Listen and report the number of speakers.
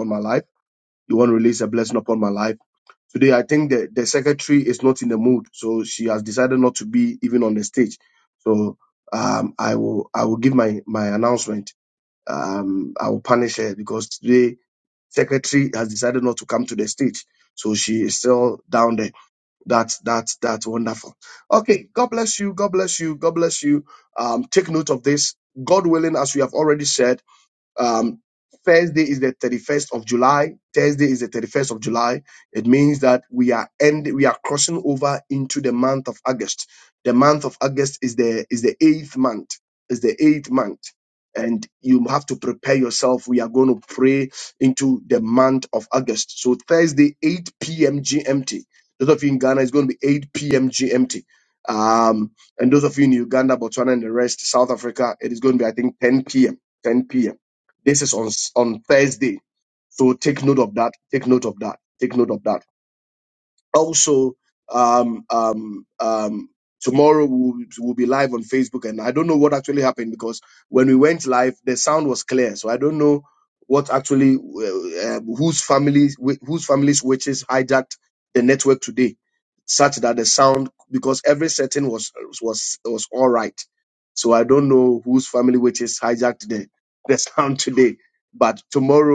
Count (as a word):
one